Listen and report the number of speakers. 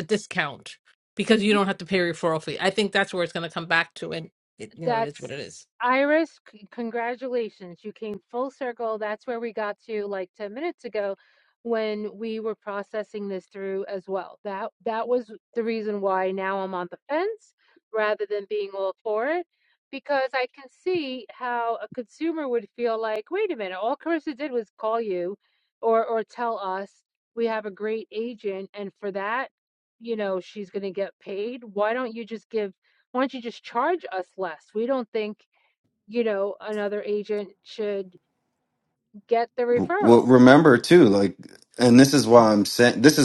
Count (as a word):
three